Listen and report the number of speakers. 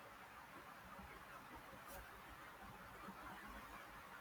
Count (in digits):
0